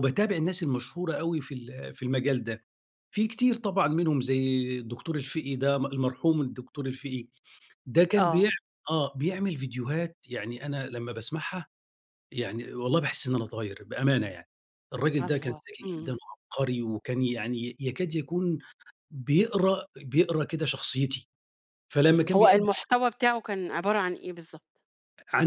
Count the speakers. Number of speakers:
2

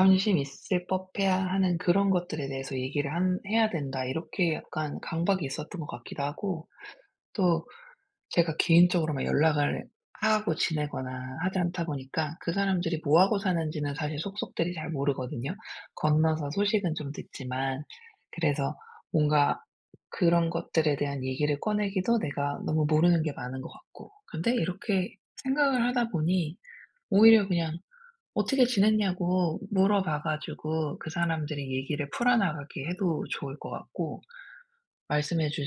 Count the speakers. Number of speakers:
1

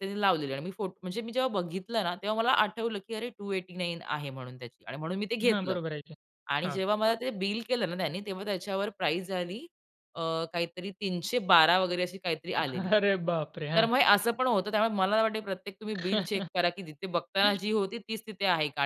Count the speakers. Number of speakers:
2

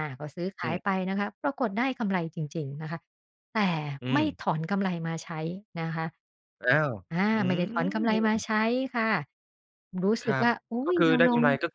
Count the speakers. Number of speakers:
2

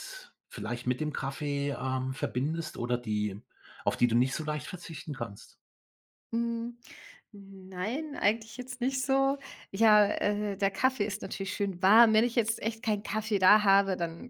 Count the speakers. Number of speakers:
2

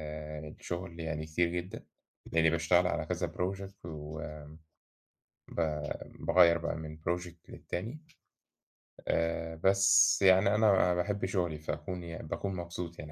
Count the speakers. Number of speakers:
1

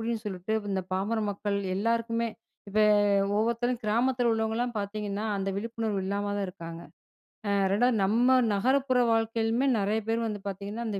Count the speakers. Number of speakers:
1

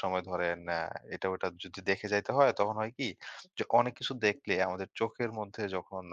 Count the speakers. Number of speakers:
1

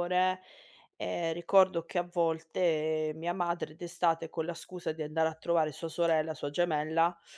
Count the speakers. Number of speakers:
1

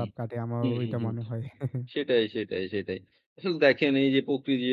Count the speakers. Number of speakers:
2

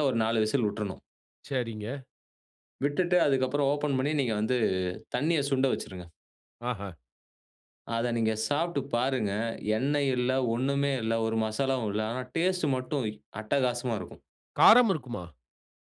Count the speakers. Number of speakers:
2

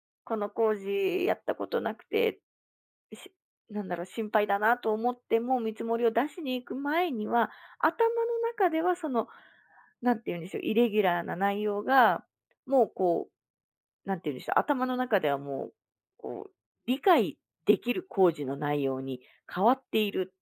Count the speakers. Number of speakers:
1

